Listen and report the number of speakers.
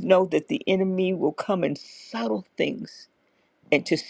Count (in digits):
1